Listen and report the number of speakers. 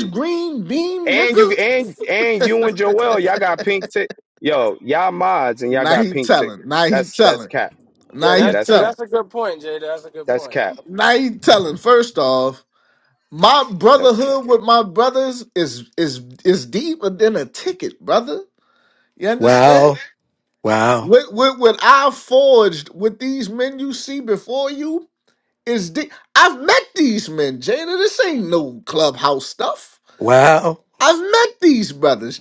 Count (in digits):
4